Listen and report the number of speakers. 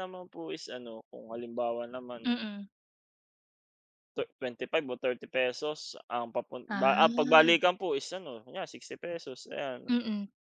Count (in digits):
2